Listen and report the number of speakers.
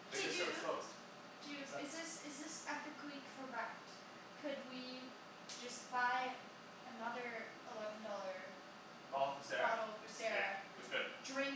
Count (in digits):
2